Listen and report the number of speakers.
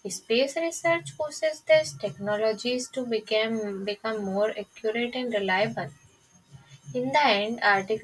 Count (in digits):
1